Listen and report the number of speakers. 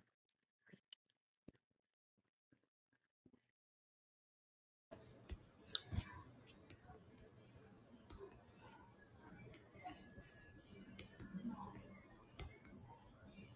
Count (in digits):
0